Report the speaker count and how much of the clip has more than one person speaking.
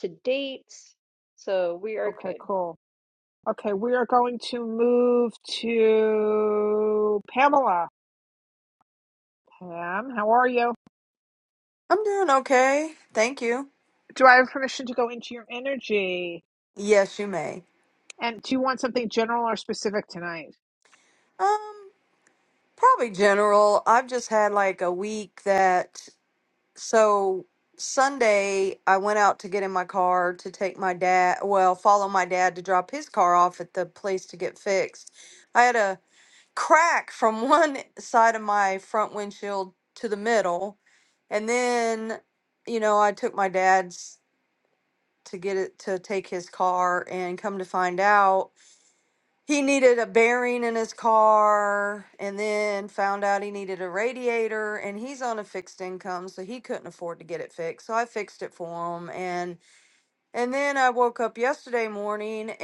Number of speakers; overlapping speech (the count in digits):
3, about 1%